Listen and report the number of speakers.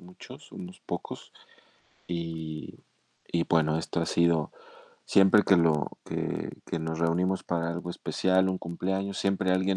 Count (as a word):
one